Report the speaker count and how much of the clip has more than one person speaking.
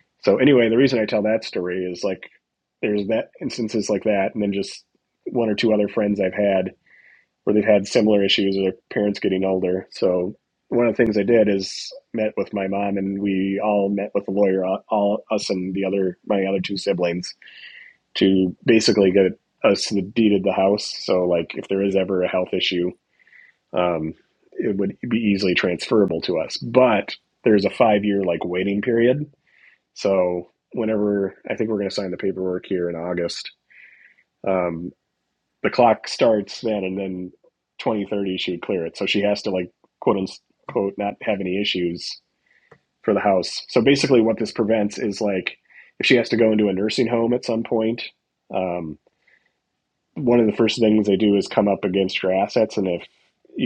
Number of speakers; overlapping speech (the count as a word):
one, no overlap